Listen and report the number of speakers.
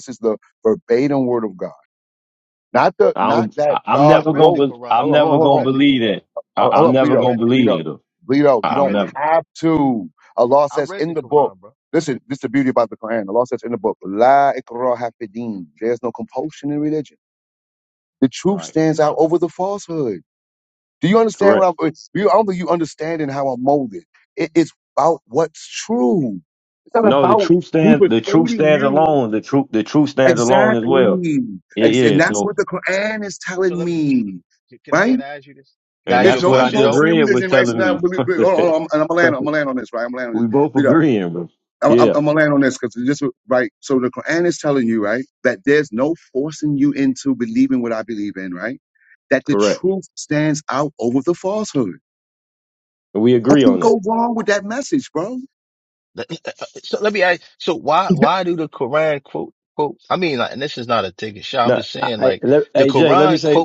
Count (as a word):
three